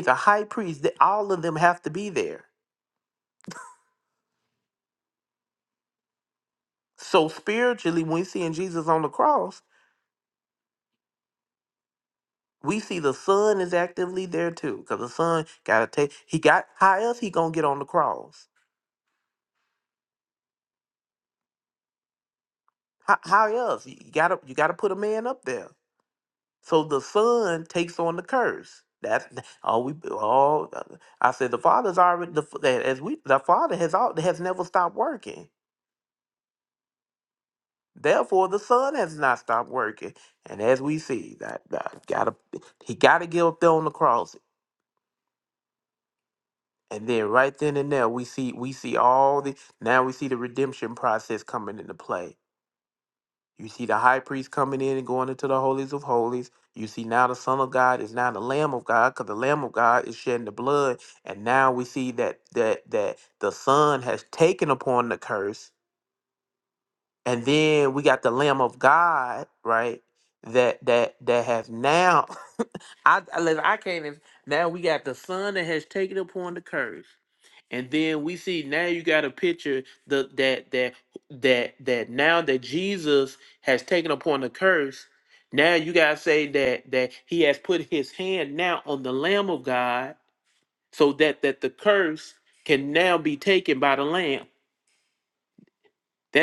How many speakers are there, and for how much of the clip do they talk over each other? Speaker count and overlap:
1, no overlap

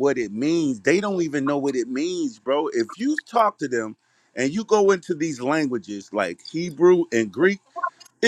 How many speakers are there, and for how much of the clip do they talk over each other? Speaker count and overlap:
1, no overlap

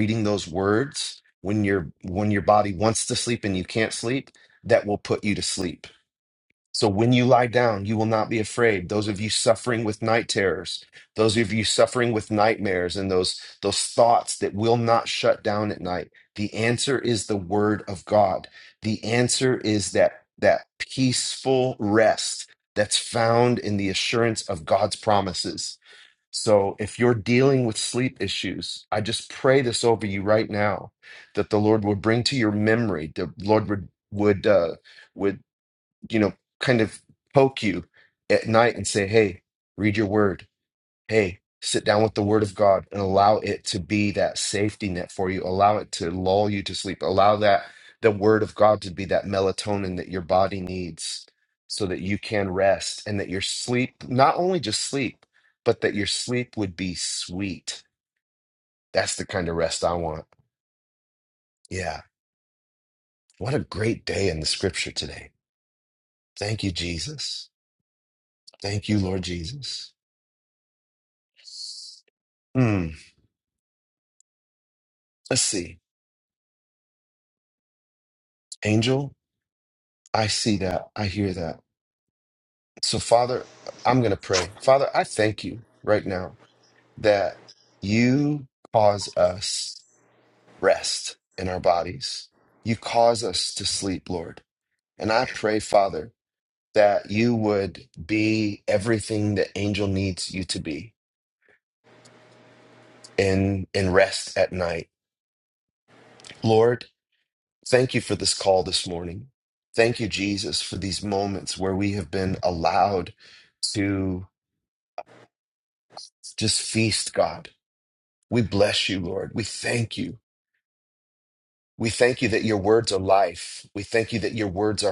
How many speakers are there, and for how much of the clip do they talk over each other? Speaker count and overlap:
1, no overlap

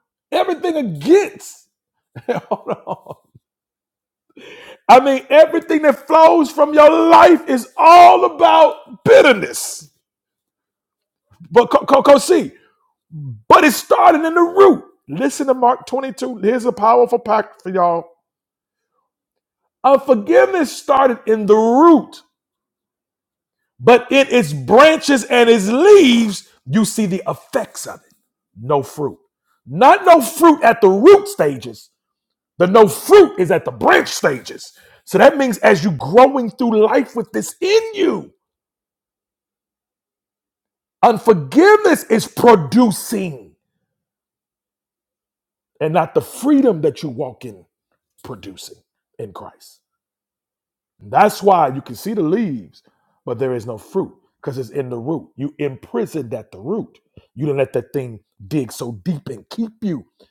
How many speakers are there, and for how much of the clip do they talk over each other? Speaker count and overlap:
1, no overlap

